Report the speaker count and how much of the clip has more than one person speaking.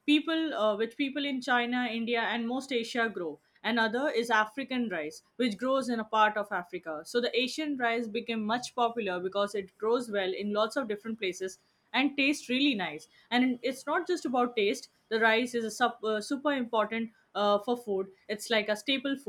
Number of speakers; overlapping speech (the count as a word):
one, no overlap